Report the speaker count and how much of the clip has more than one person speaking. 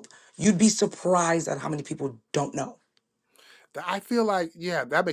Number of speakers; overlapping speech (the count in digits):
2, no overlap